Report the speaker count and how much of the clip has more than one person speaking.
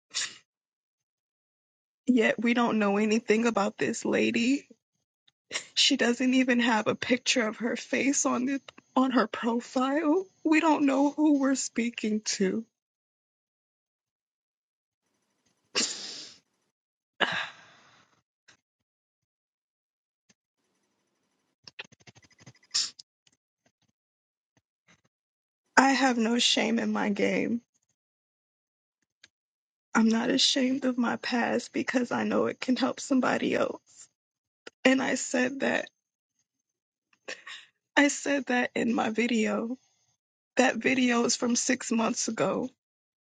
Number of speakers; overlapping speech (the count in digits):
1, no overlap